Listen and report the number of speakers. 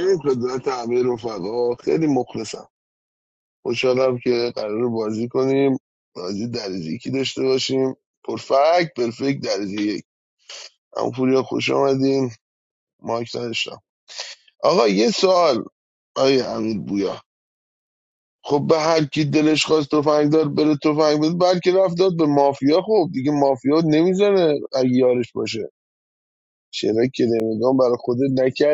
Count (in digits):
1